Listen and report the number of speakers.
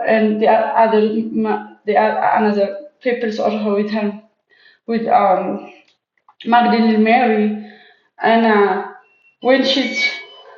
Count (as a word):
one